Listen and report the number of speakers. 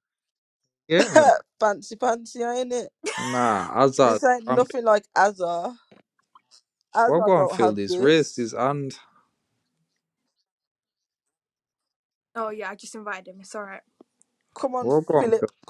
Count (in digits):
3